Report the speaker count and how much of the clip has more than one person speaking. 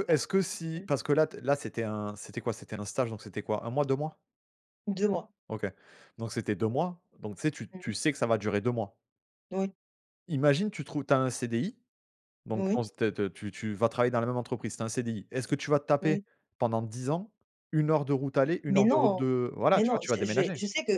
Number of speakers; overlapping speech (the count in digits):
2, about 10%